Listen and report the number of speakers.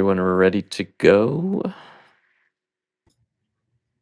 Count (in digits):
1